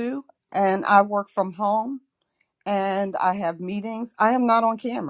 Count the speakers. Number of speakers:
one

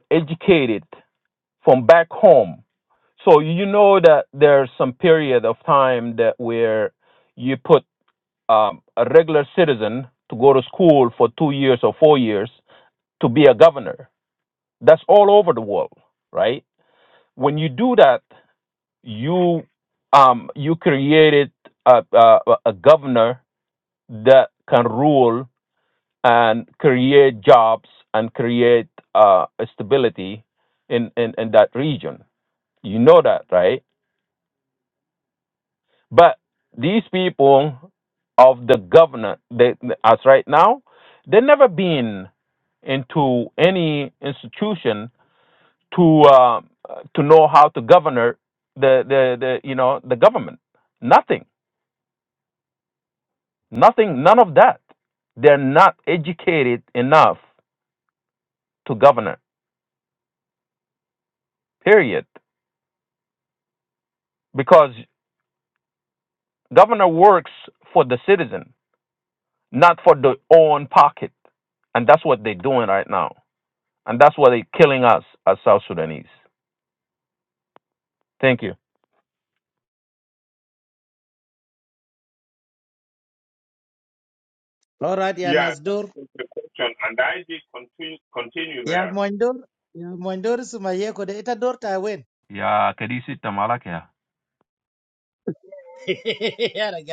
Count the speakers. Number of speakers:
three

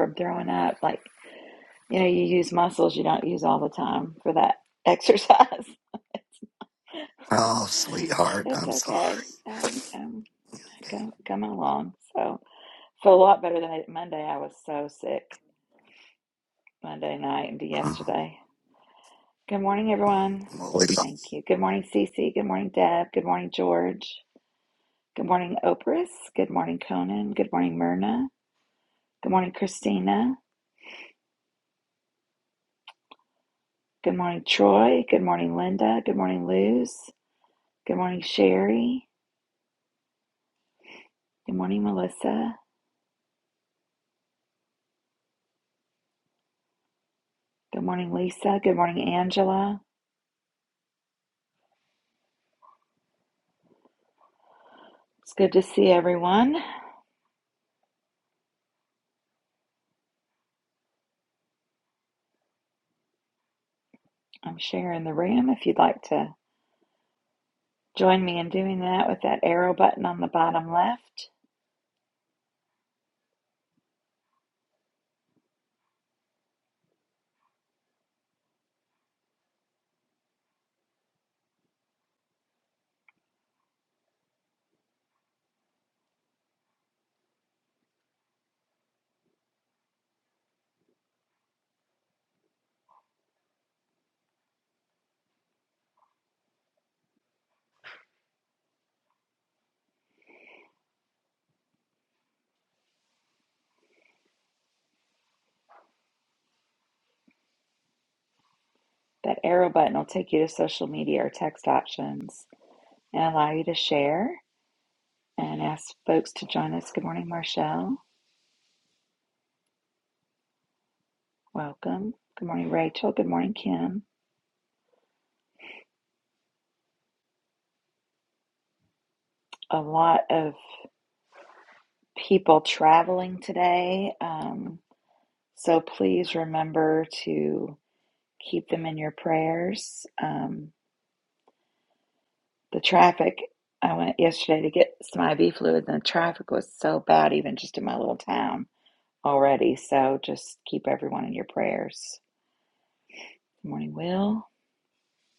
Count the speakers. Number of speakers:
two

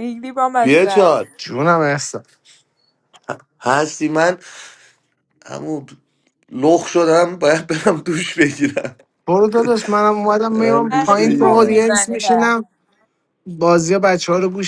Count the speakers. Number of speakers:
three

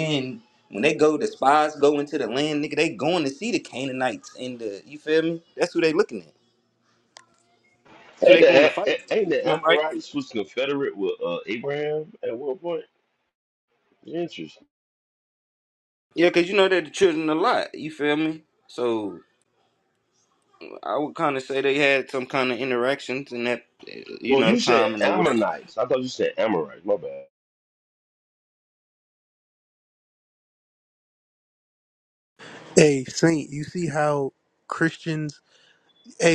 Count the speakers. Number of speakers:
three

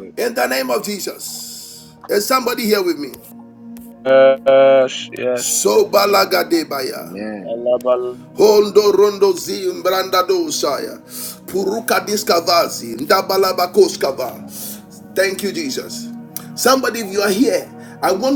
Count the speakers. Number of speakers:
three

